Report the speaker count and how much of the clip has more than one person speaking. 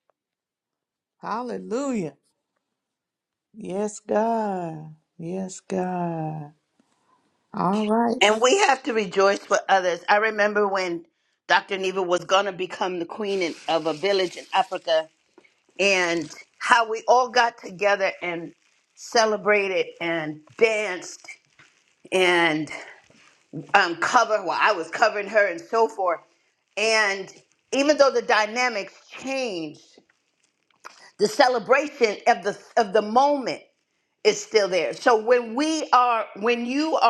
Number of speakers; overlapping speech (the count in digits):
2, under 1%